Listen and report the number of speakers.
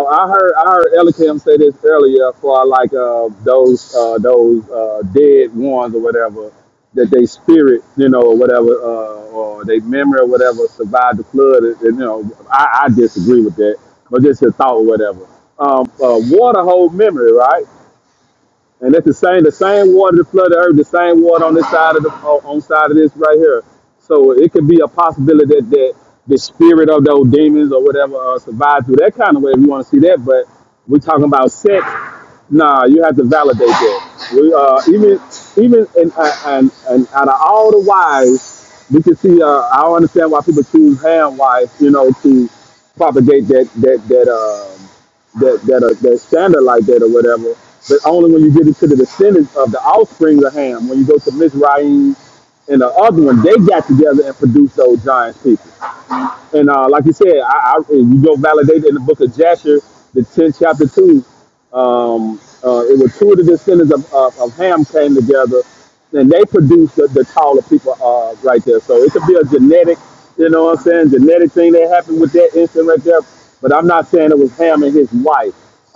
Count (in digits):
1